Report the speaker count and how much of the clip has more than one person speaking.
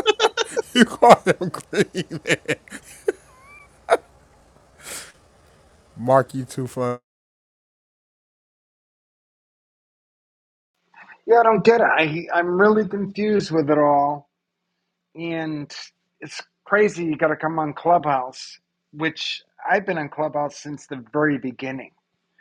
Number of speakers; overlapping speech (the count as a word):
two, no overlap